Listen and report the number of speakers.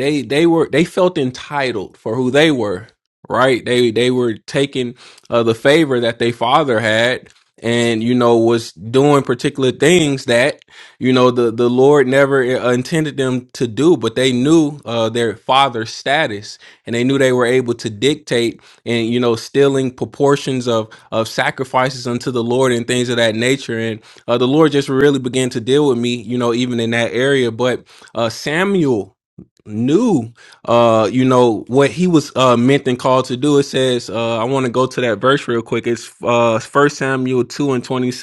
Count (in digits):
1